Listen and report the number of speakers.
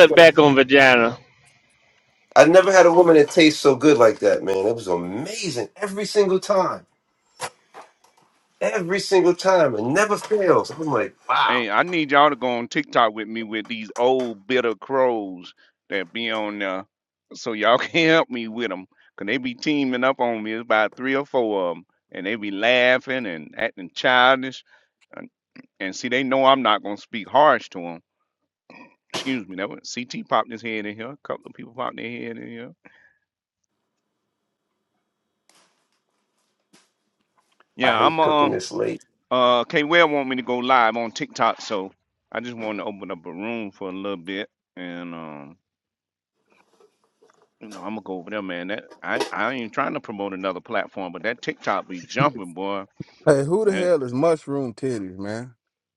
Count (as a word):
four